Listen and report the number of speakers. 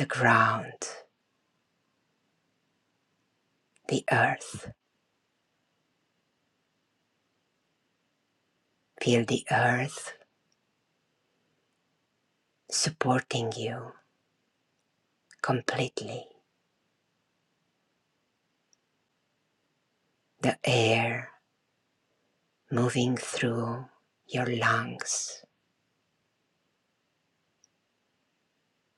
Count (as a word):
one